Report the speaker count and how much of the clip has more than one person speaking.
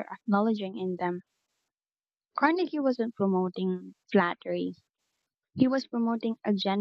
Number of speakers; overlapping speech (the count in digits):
1, no overlap